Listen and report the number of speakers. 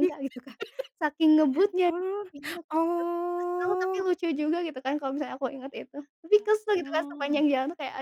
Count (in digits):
2